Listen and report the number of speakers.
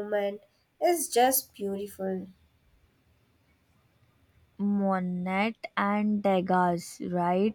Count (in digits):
2